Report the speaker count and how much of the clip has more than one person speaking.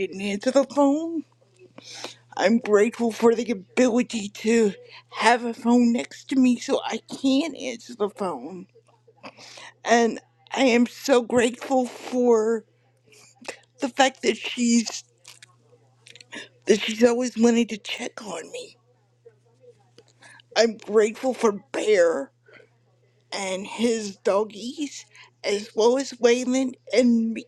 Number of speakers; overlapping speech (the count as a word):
one, no overlap